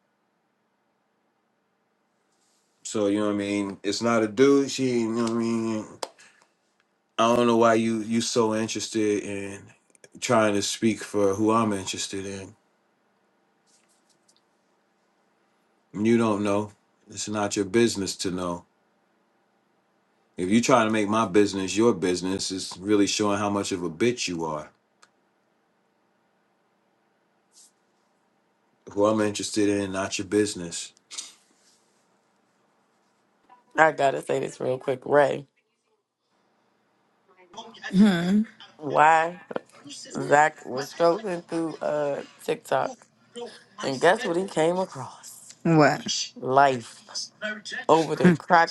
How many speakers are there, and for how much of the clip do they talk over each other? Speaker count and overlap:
3, no overlap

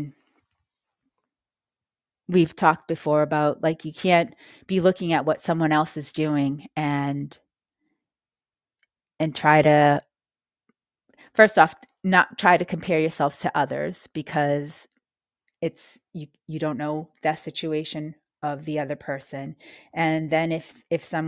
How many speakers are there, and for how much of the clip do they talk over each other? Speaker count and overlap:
1, no overlap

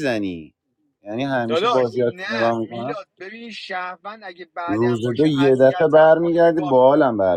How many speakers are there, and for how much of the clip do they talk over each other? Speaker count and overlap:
2, about 52%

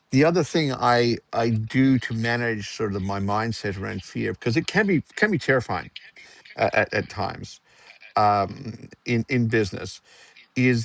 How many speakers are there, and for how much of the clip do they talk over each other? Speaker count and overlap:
1, no overlap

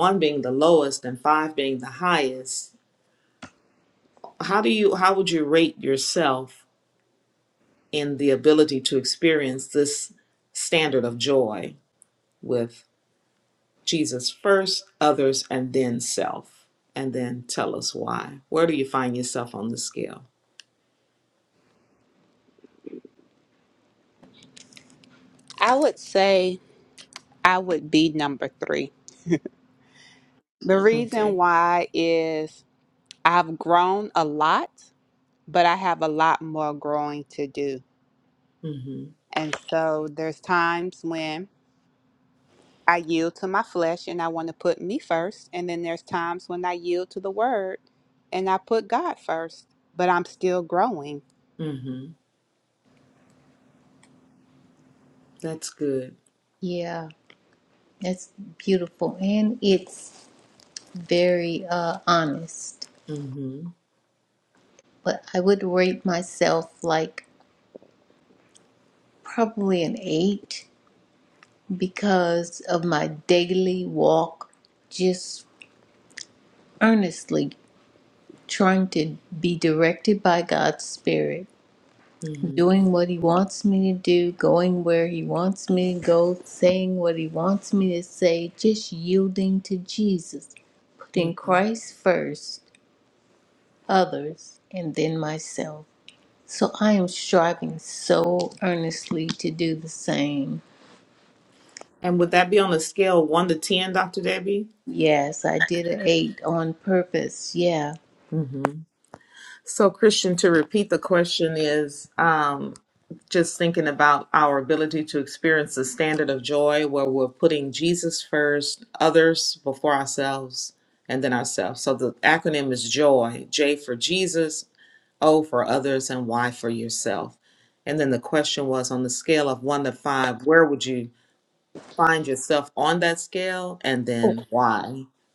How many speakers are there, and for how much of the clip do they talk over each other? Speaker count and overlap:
3, about 1%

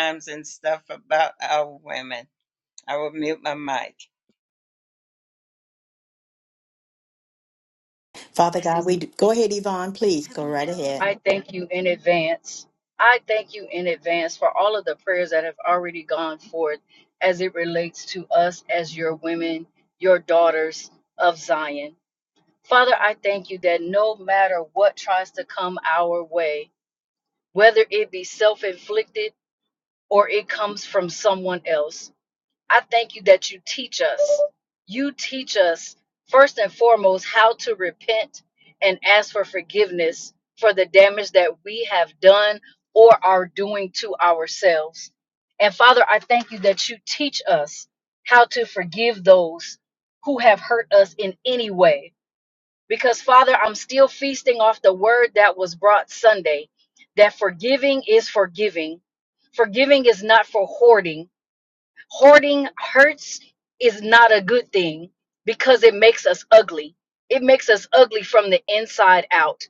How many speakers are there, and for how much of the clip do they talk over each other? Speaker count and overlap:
3, under 1%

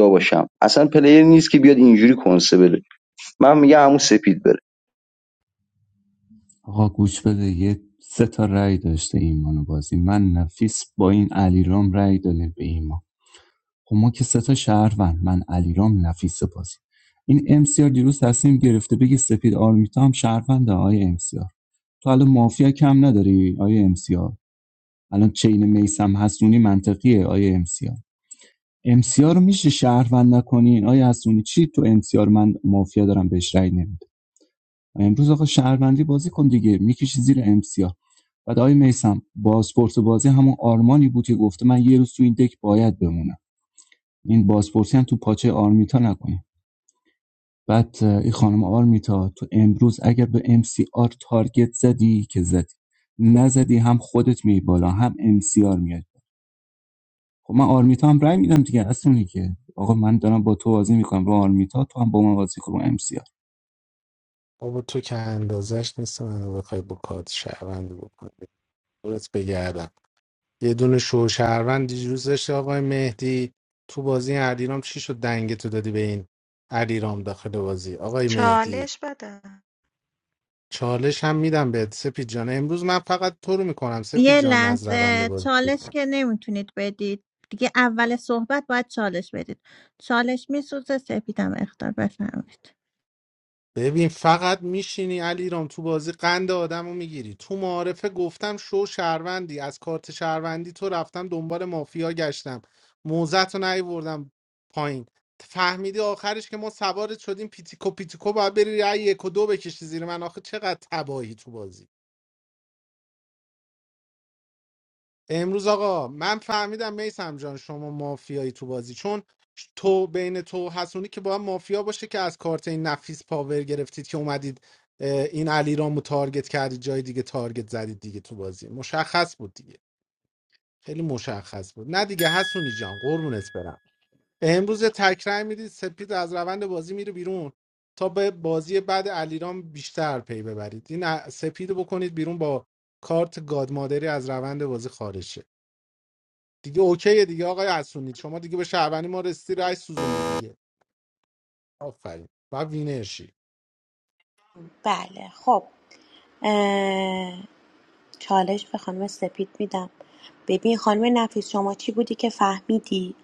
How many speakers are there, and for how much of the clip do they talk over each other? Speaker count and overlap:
6, about 1%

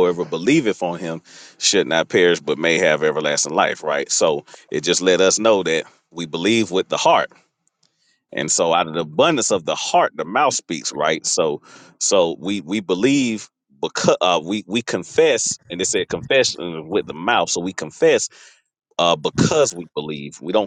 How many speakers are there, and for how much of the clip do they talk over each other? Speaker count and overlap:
1, no overlap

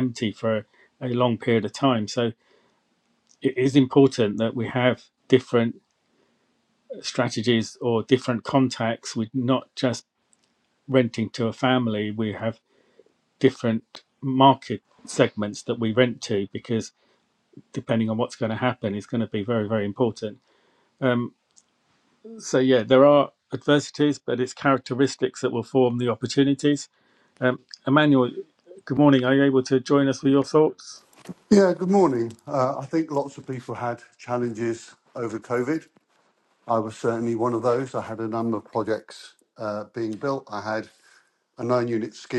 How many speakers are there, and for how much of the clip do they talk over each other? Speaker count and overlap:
2, no overlap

